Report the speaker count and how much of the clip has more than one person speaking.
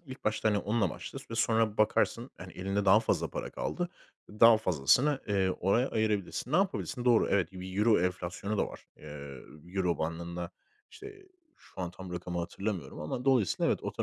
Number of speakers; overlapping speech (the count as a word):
one, no overlap